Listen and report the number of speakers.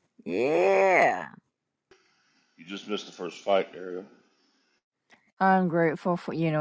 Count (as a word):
three